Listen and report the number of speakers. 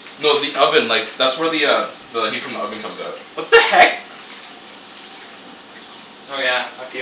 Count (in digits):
2